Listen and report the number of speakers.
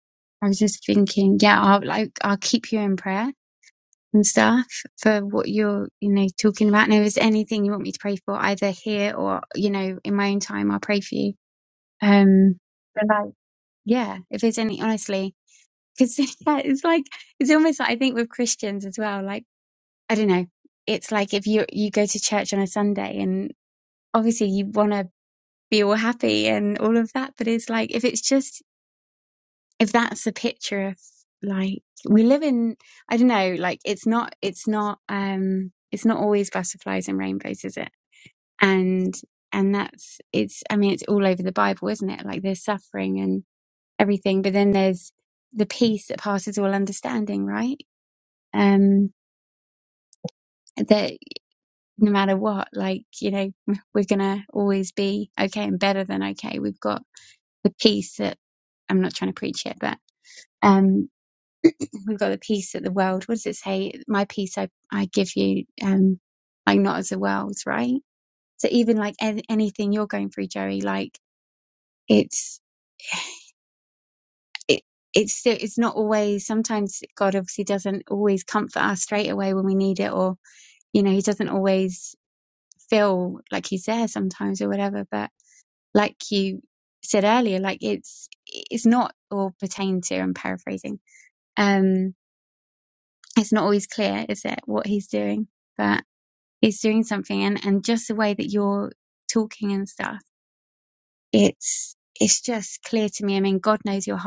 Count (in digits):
1